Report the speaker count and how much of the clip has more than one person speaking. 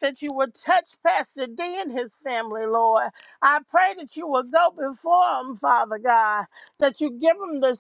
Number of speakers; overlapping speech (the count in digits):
1, no overlap